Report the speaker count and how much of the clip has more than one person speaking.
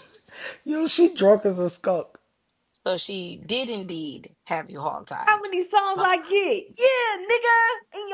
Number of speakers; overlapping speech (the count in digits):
3, about 4%